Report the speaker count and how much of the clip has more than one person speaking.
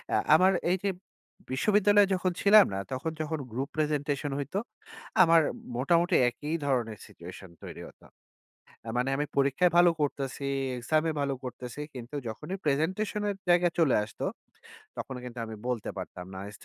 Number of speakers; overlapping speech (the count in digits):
1, no overlap